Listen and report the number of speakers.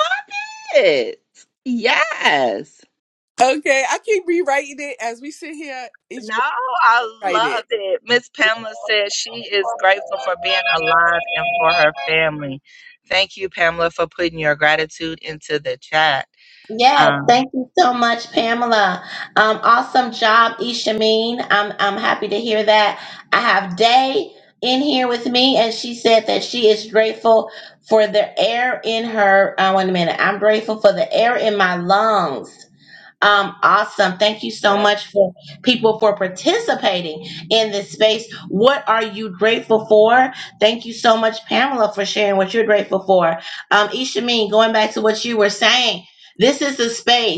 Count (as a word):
three